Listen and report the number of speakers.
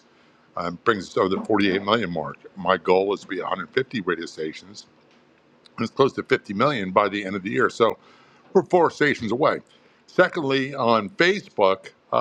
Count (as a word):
one